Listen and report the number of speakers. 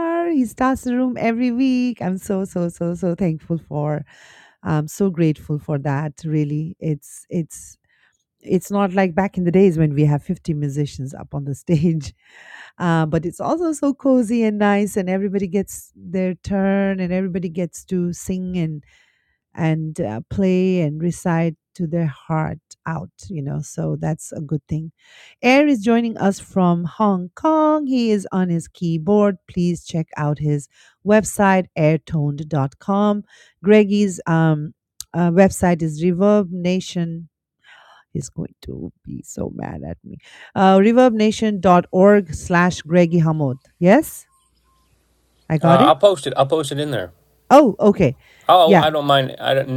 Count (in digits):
2